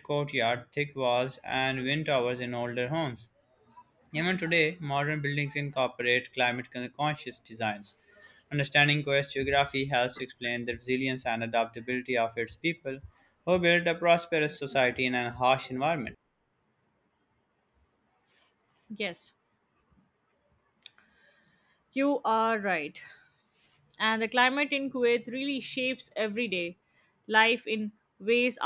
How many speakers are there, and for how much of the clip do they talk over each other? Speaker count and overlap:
two, no overlap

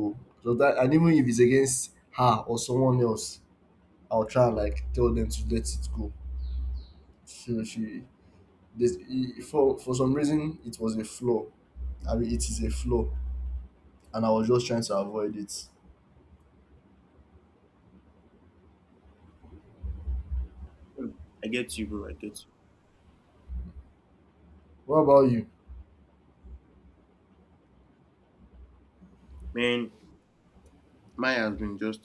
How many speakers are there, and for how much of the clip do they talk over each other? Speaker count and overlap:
two, no overlap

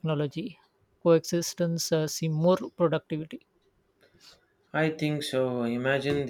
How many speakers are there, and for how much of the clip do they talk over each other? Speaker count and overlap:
two, no overlap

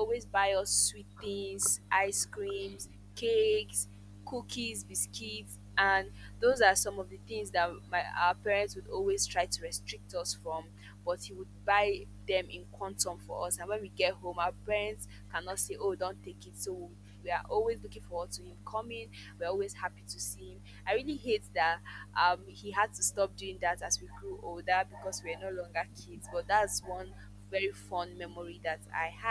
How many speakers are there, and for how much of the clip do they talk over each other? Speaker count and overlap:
one, no overlap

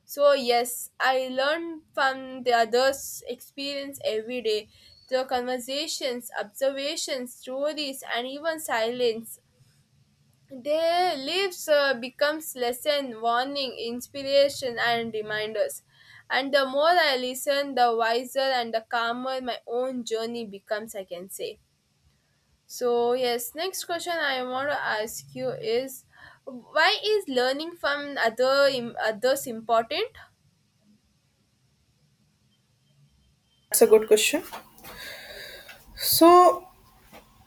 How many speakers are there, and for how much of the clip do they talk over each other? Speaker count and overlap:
two, no overlap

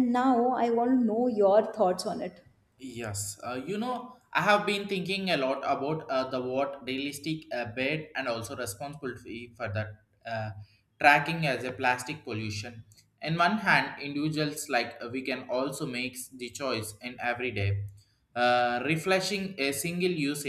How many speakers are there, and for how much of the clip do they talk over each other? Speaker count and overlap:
two, no overlap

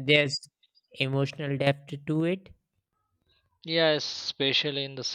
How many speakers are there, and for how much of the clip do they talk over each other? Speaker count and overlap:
two, no overlap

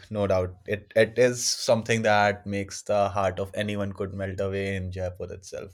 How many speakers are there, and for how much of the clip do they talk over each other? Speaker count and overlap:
one, no overlap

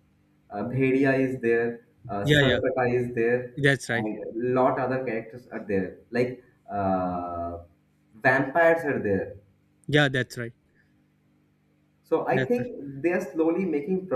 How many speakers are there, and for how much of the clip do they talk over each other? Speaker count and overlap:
two, about 6%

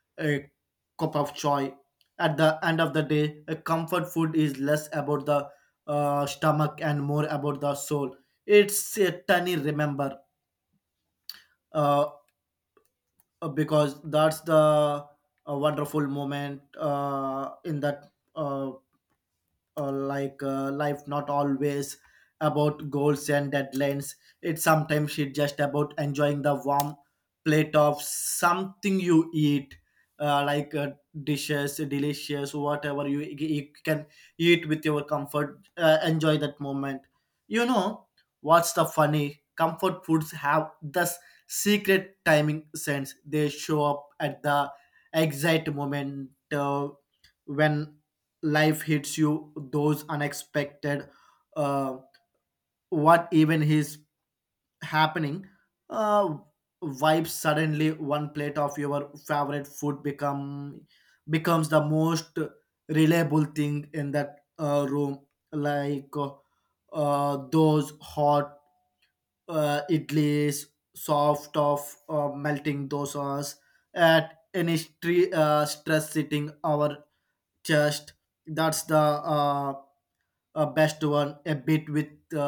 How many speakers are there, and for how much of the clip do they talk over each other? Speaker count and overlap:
one, no overlap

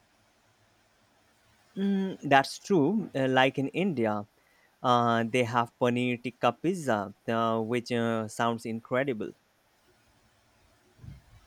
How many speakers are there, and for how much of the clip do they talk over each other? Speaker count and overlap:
one, no overlap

